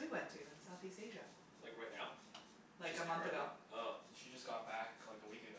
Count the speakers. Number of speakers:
3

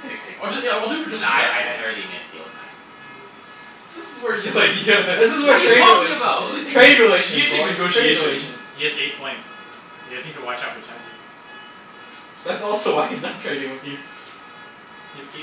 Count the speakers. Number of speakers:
4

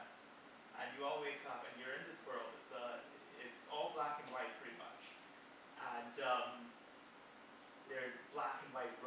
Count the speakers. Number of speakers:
1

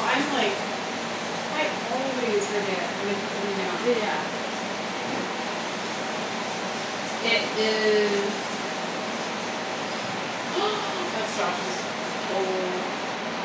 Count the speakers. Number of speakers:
2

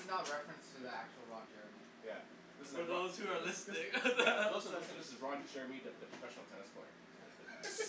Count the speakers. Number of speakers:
3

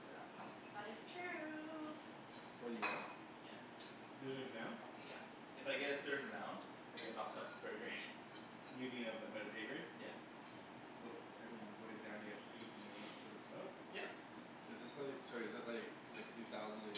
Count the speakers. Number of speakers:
4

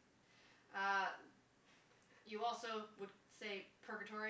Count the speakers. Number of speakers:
1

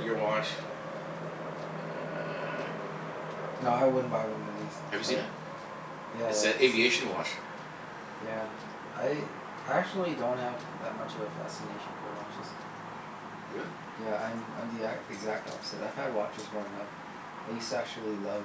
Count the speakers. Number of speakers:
2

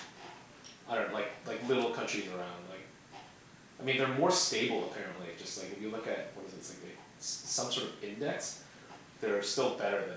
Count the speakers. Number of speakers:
1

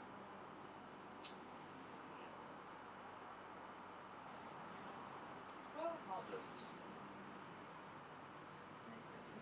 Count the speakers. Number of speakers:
1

